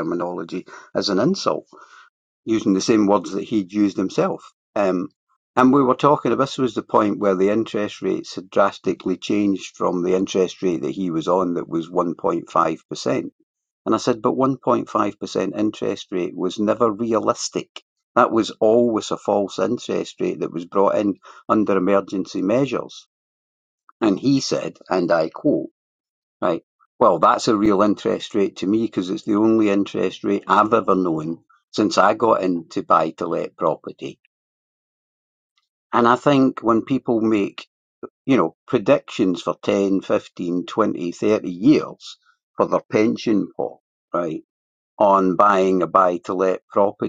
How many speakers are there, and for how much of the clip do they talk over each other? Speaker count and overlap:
one, no overlap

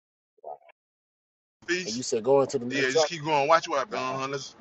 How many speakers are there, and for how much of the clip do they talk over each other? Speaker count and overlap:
two, about 16%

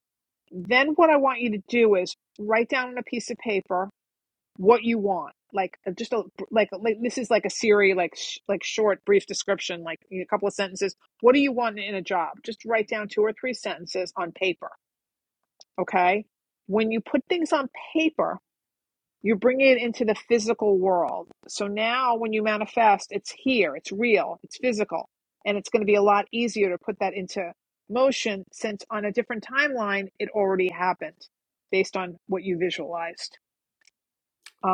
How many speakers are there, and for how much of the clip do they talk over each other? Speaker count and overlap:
one, no overlap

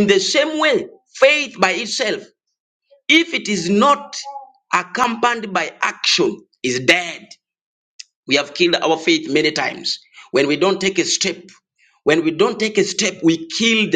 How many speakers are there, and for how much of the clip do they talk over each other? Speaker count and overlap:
one, no overlap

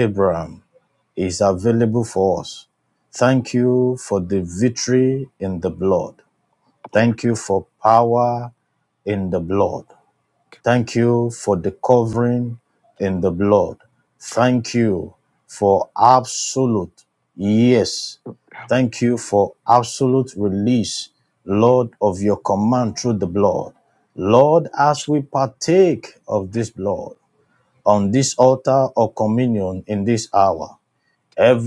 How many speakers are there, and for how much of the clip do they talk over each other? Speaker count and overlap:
one, no overlap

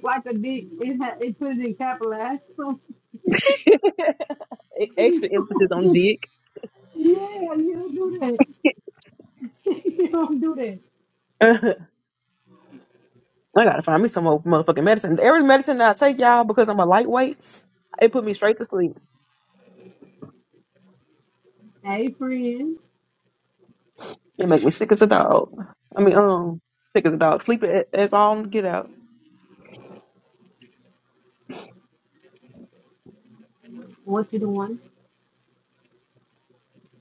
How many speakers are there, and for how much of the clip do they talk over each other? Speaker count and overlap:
two, no overlap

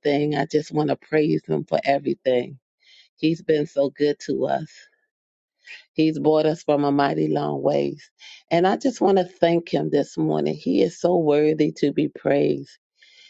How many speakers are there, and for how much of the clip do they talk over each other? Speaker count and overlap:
one, no overlap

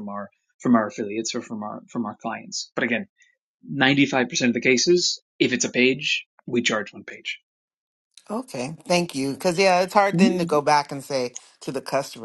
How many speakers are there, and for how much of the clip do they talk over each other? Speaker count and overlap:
two, about 2%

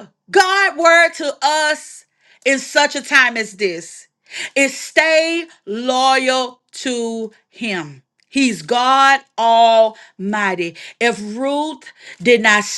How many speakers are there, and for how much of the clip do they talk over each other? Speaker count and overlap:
one, no overlap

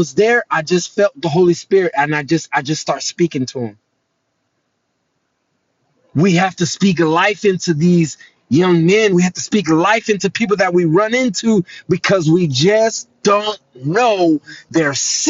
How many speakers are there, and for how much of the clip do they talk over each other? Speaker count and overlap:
one, no overlap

